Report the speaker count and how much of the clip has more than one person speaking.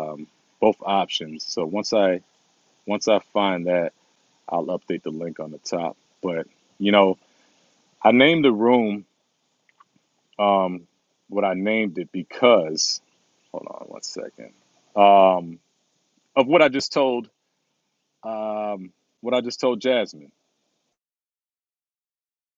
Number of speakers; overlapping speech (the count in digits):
1, no overlap